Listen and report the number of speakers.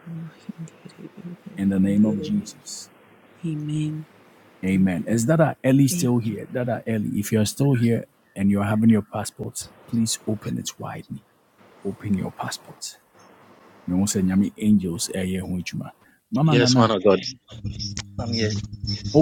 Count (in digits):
3